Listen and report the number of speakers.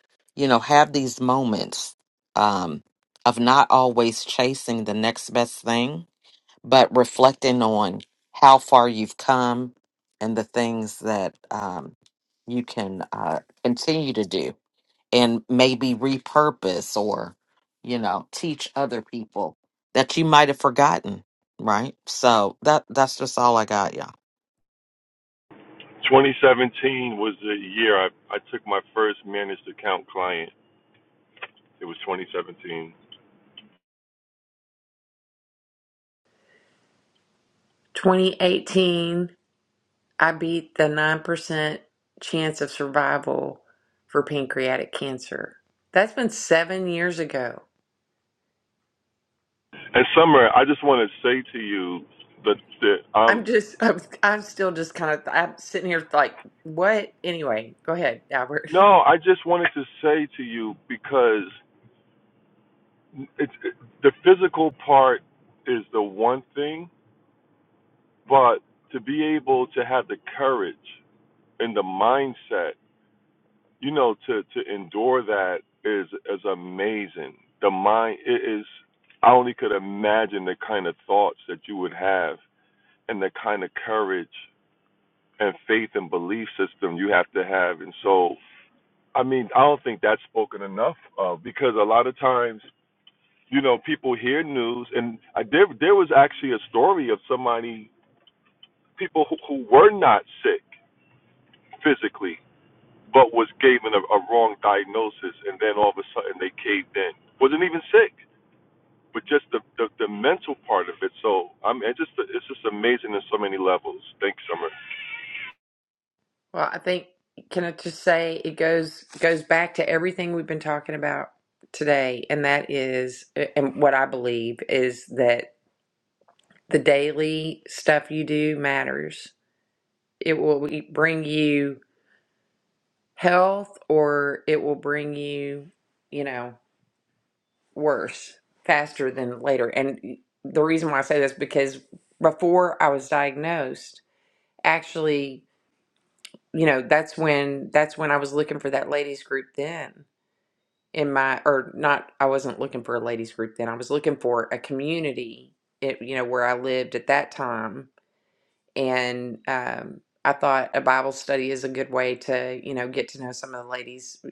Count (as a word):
three